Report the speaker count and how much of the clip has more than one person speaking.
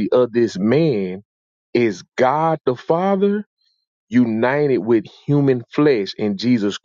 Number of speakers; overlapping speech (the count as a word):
one, no overlap